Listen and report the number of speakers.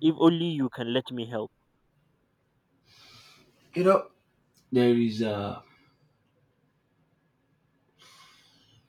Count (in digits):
2